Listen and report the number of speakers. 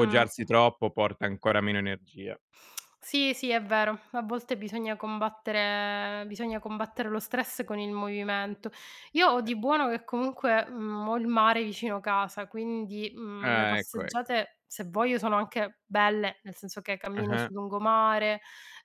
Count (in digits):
2